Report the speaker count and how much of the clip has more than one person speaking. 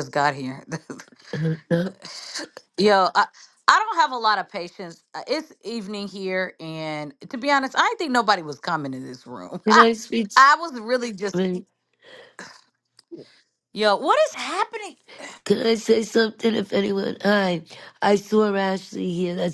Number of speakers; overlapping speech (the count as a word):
two, no overlap